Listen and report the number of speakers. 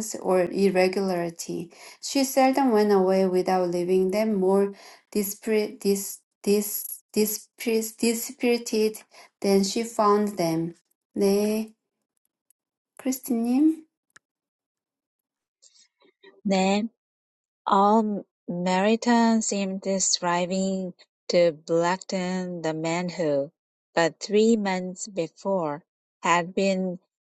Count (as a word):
two